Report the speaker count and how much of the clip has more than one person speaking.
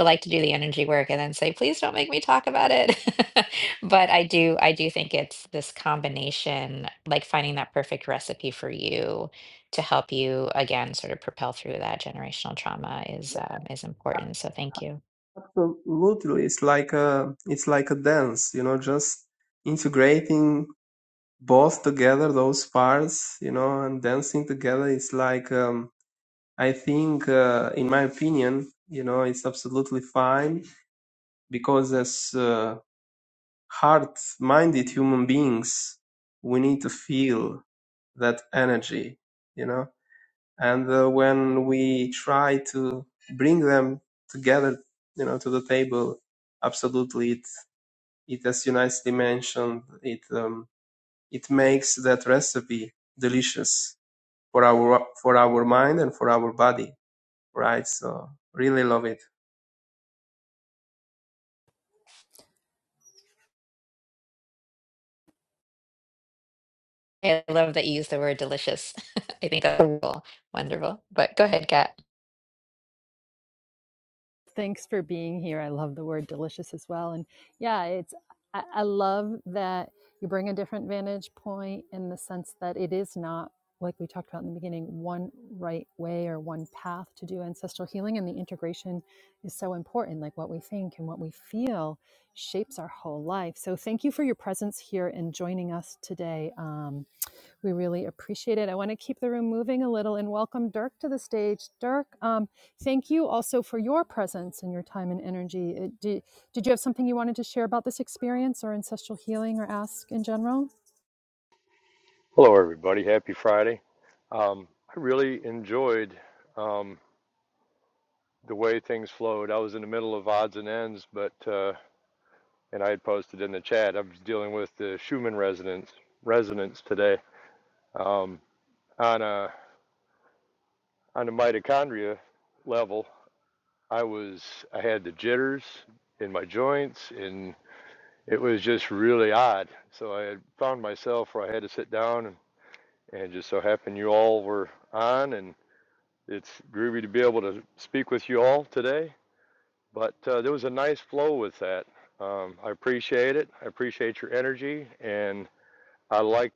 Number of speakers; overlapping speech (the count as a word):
four, no overlap